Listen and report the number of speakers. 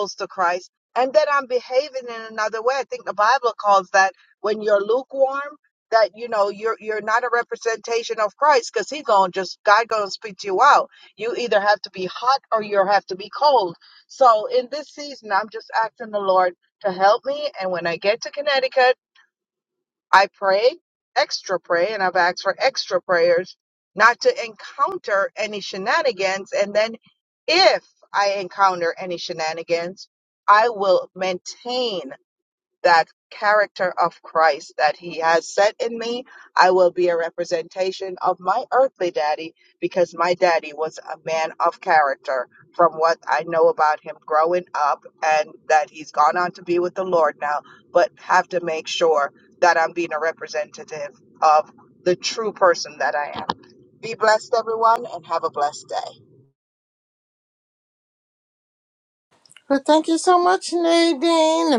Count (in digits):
2